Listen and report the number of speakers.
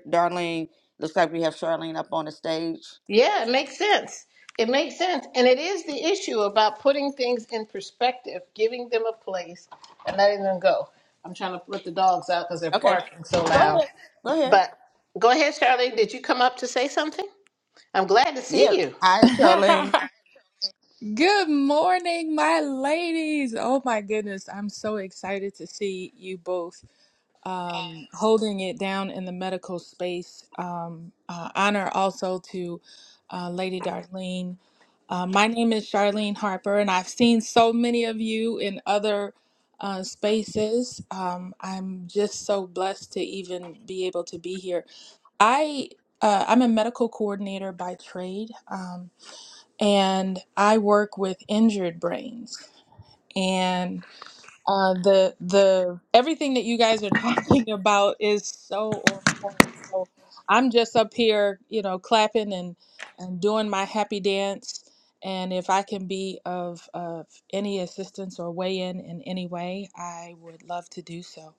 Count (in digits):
3